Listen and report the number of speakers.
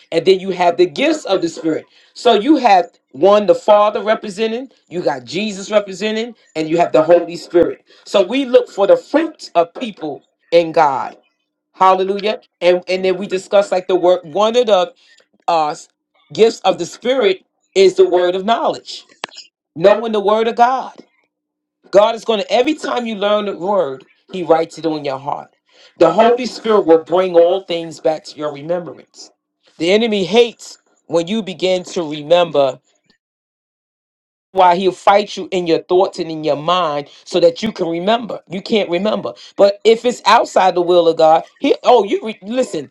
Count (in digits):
1